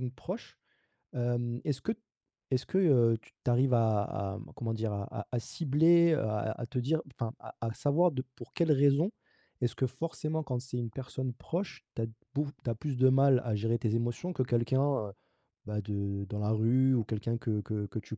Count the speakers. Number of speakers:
one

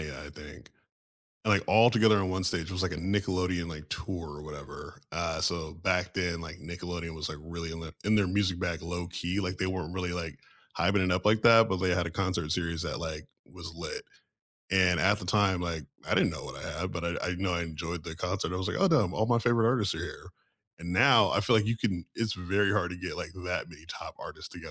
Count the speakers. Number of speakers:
one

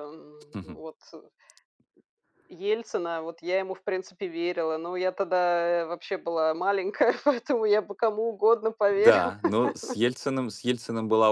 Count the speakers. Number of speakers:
two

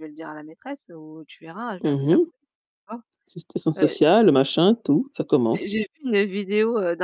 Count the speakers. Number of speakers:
two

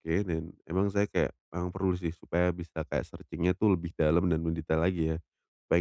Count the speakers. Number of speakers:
one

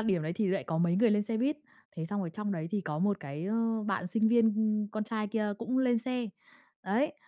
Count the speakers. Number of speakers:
one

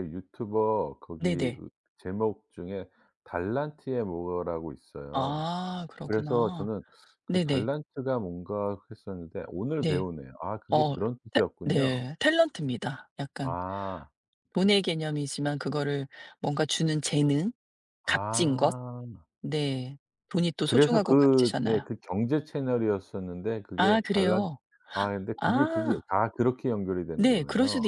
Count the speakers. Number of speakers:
two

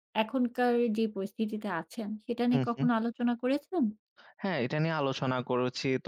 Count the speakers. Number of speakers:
two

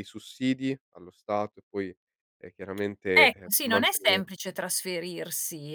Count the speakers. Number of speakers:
two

